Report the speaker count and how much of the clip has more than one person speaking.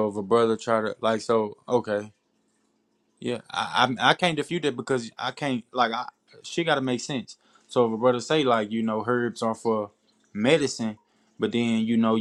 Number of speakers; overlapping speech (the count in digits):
1, no overlap